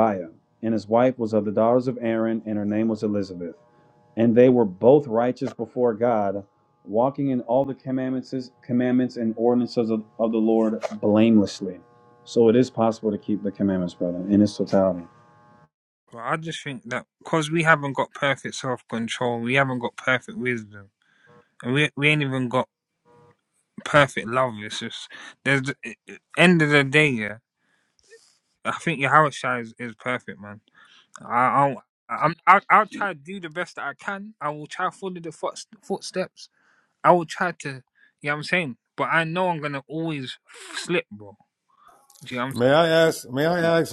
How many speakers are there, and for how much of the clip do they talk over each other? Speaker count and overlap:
3, under 1%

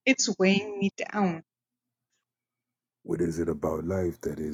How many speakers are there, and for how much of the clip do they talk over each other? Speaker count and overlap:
2, no overlap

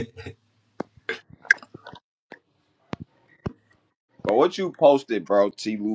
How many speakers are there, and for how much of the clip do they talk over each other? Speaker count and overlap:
1, no overlap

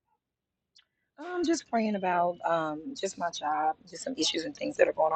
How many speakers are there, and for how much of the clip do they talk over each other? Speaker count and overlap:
1, no overlap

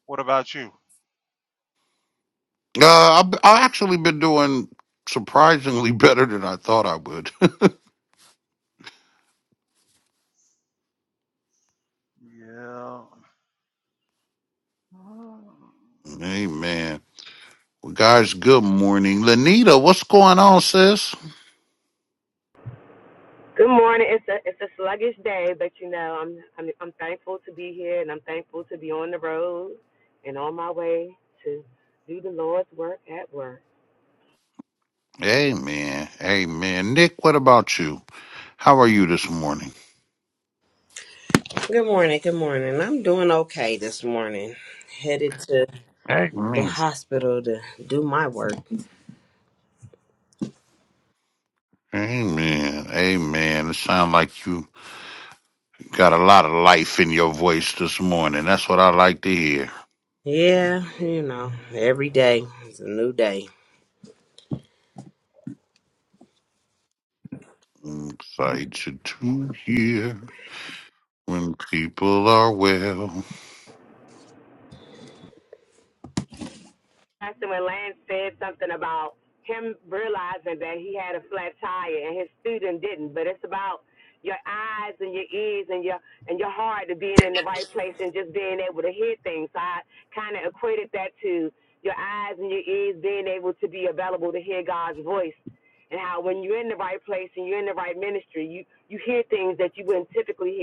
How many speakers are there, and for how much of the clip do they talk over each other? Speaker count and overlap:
4, under 1%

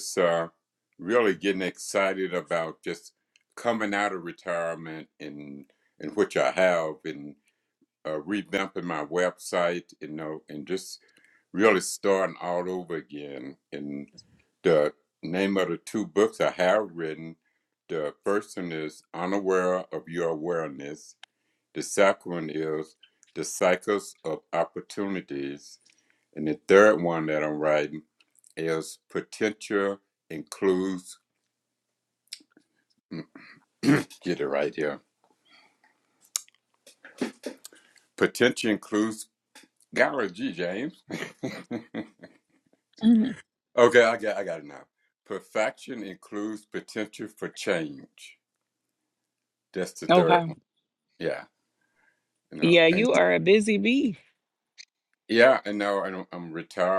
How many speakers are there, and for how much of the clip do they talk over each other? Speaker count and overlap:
2, about 2%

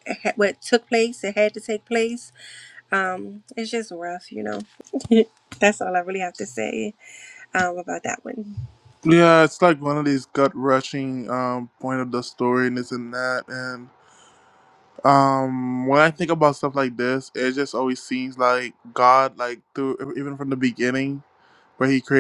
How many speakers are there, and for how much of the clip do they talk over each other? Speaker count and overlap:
2, no overlap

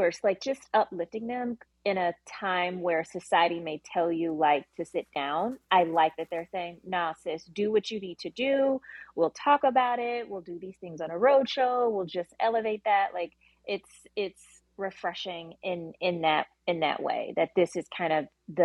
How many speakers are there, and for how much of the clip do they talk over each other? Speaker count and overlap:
1, no overlap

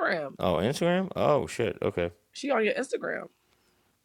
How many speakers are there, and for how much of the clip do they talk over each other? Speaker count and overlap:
2, no overlap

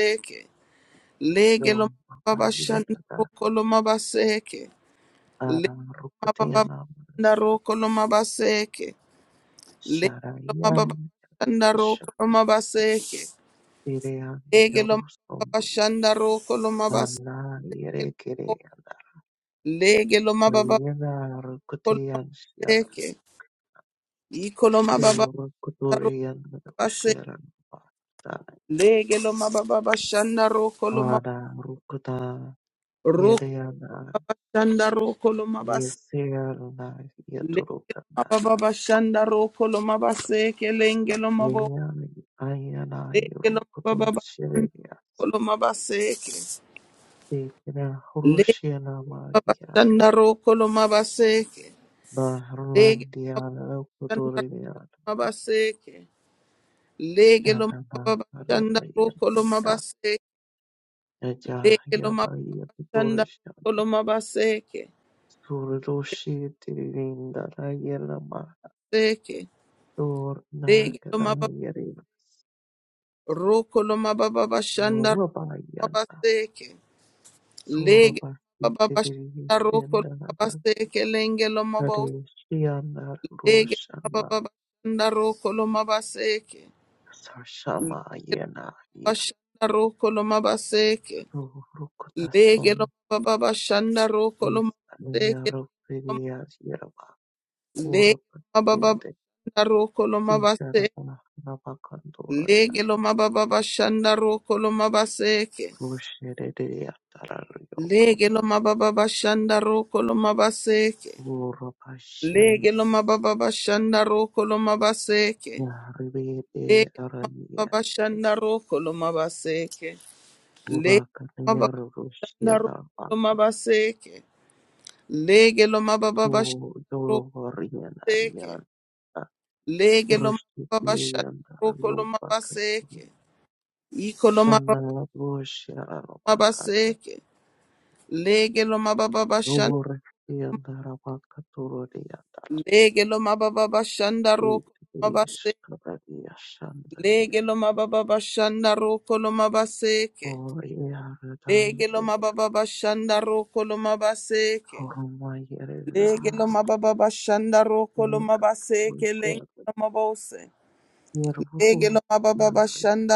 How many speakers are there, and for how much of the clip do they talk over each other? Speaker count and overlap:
2, about 15%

